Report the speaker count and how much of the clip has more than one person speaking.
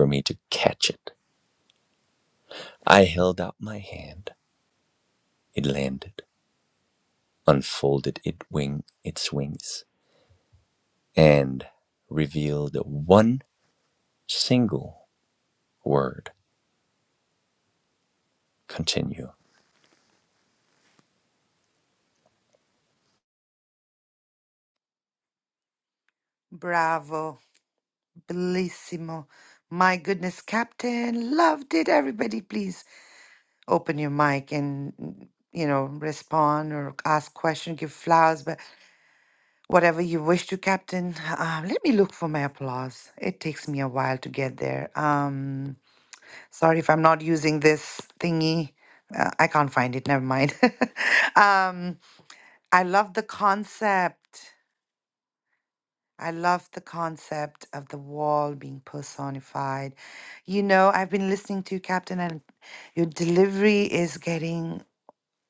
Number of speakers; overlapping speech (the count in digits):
2, no overlap